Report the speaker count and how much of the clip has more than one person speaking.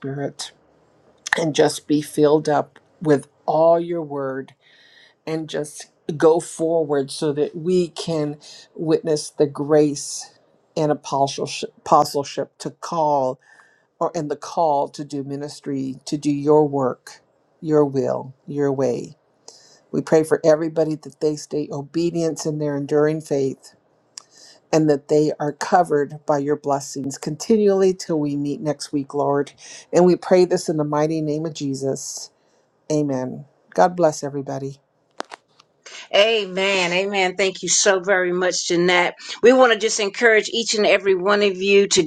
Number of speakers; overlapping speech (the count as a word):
two, no overlap